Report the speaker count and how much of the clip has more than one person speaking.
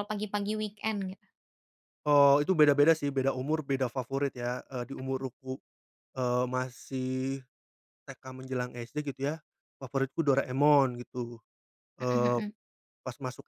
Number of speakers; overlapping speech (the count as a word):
two, about 3%